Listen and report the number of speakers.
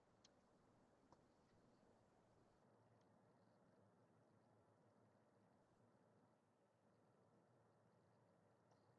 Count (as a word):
zero